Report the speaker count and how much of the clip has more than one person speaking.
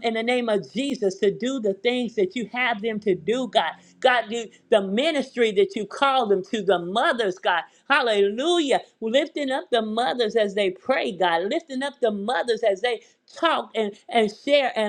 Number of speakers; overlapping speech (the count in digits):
1, no overlap